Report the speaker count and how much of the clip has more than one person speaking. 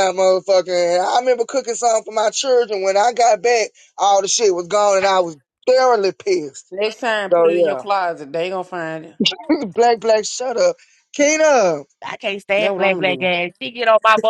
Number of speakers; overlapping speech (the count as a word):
three, about 8%